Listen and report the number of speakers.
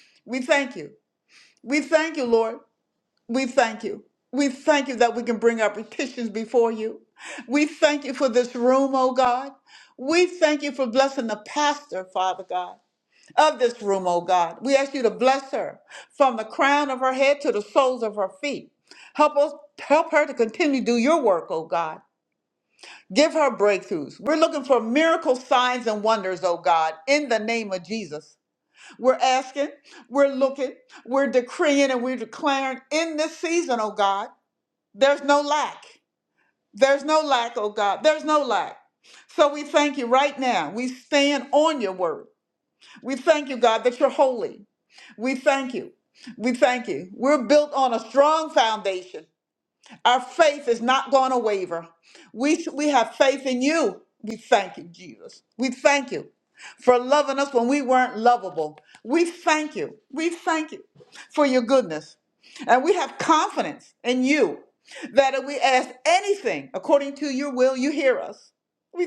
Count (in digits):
1